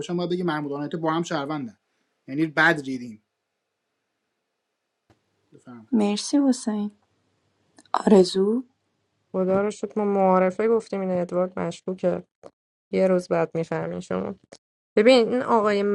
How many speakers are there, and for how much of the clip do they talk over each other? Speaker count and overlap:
three, no overlap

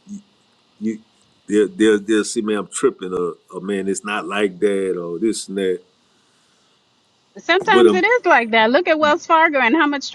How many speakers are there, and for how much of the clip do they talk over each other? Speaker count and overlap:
two, about 3%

